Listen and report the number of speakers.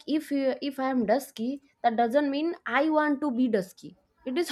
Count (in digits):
1